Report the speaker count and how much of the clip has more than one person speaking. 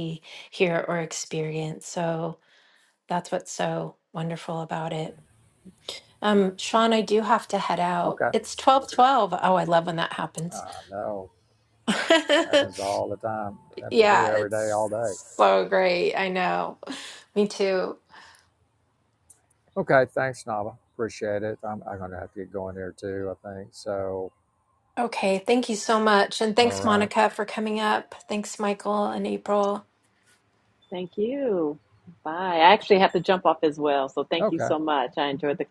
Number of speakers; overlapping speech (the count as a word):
three, about 5%